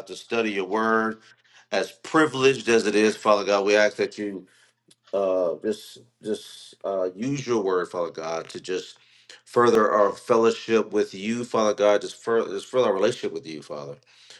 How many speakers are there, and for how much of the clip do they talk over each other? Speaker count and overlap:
1, no overlap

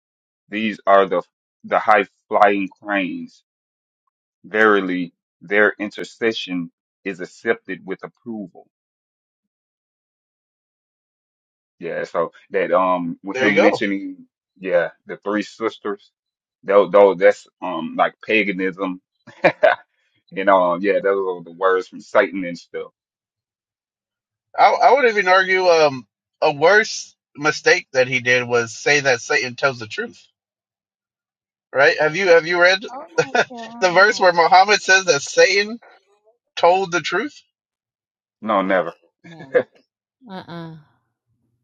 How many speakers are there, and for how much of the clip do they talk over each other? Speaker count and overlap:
3, about 3%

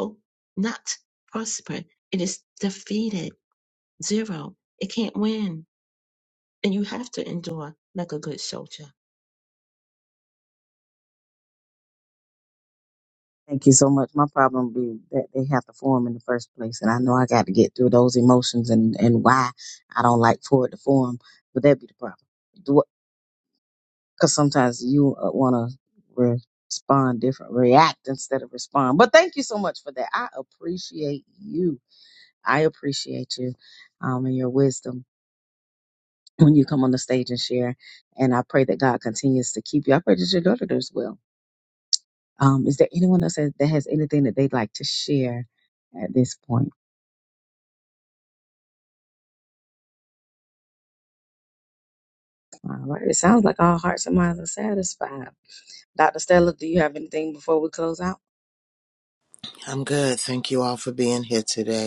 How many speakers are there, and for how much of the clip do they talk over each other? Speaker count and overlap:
3, no overlap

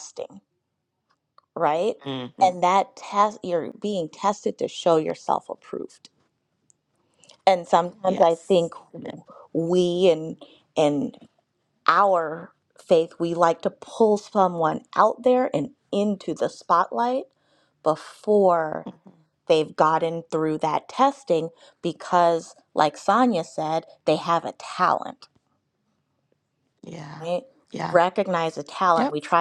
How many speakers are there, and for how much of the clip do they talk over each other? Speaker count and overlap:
2, about 2%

